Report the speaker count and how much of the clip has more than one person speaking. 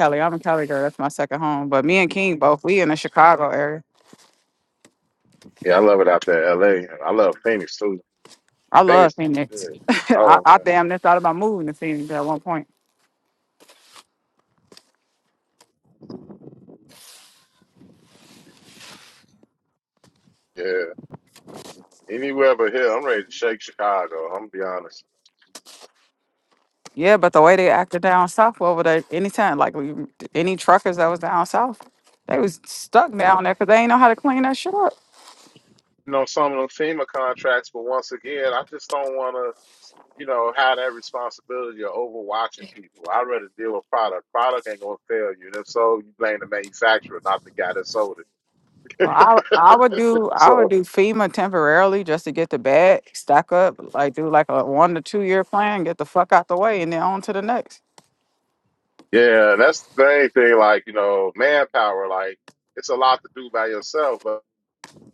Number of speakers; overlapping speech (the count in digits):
2, about 1%